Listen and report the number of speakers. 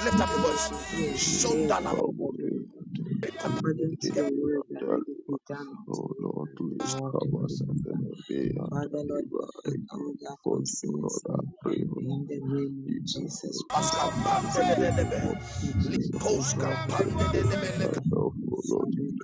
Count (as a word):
three